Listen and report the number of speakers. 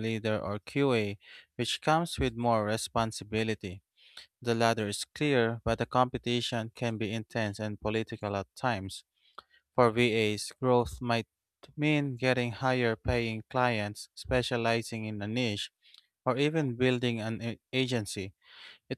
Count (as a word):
one